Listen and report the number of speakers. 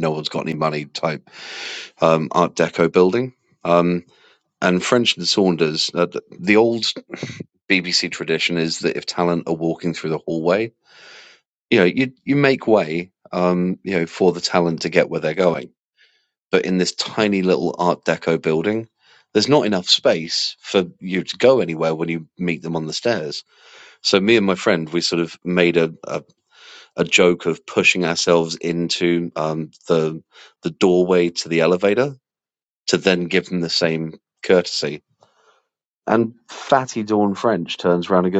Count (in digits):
1